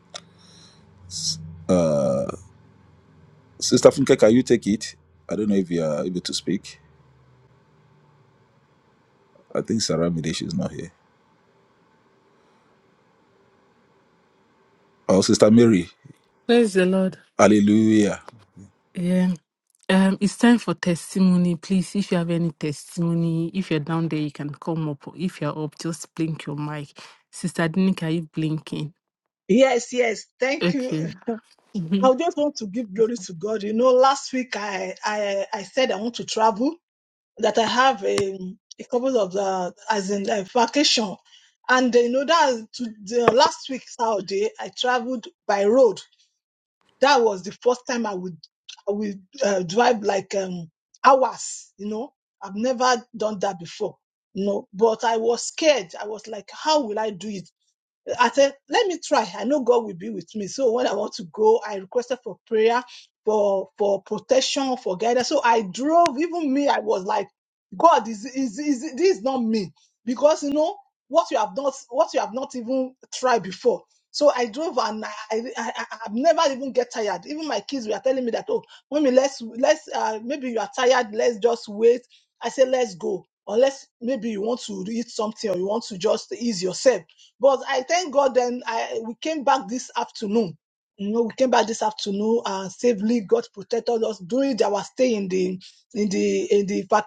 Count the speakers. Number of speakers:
3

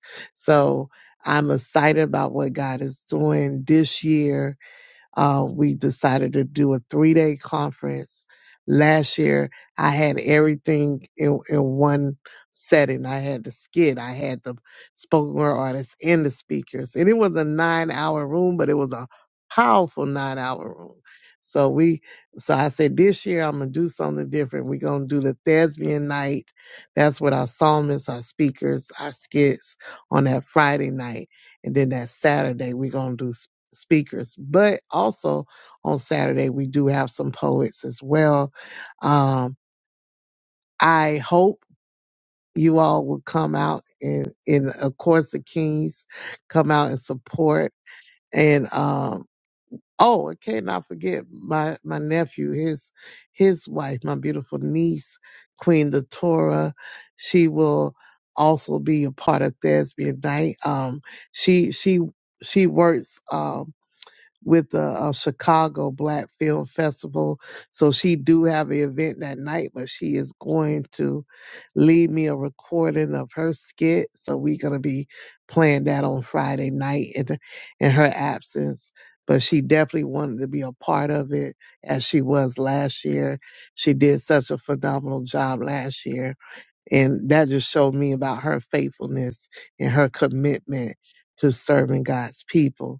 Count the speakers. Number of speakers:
1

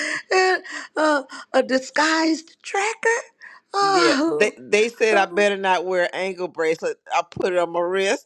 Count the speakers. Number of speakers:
2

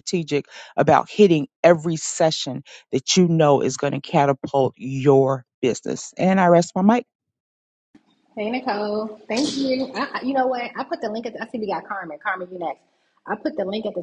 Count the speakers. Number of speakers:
2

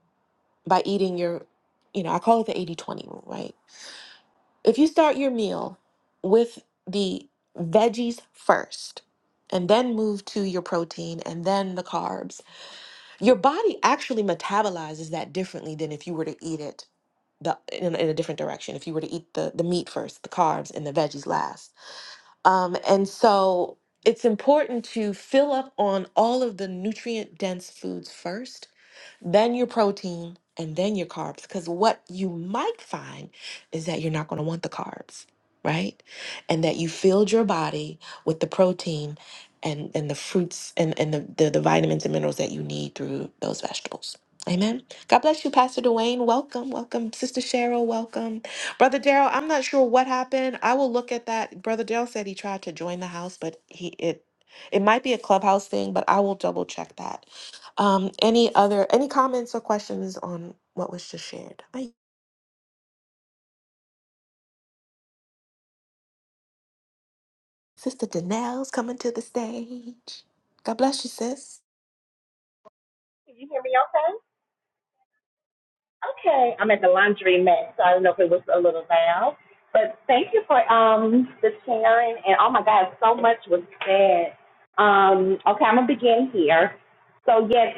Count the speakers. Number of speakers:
2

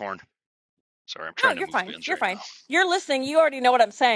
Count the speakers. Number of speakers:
2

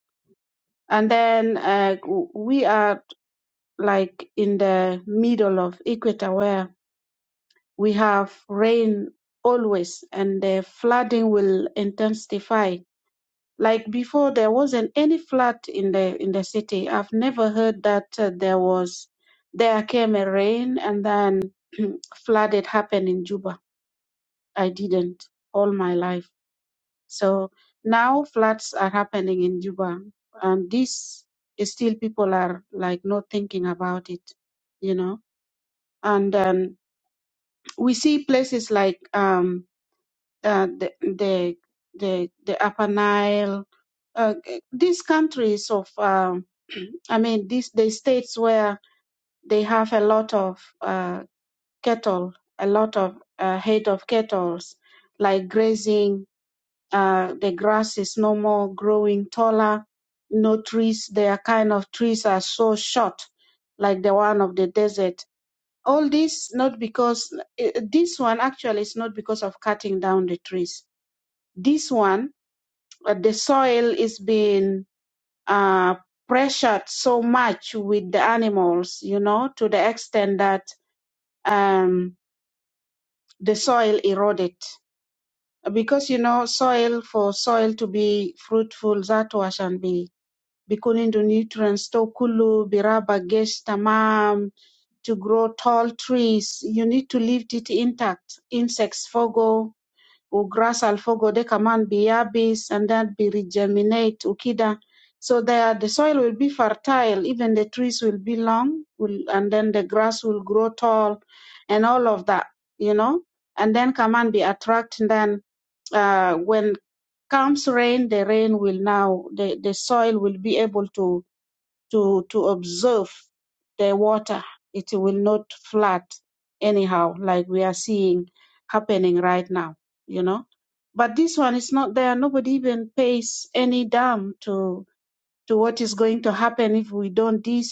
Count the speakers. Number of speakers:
1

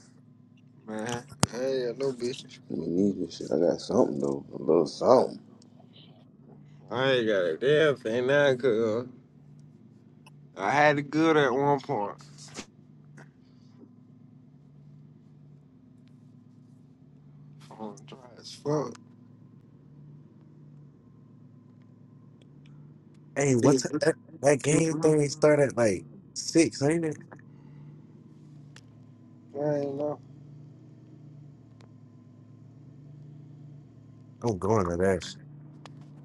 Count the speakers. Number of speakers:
3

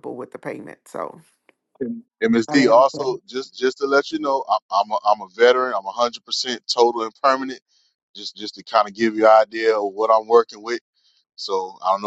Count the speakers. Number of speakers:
2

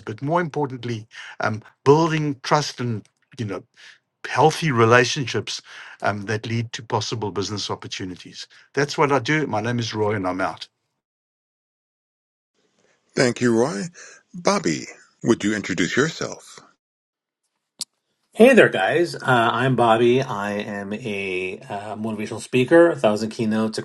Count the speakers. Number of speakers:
3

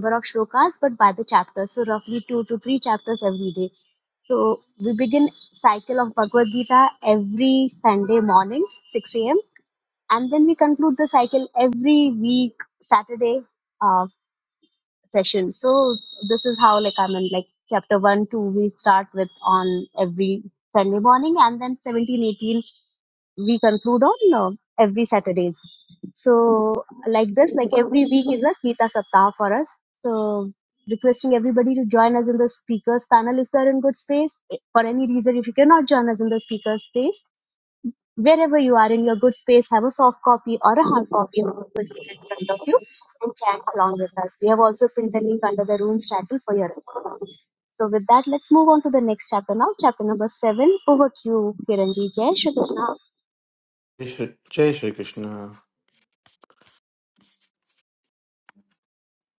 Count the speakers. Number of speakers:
2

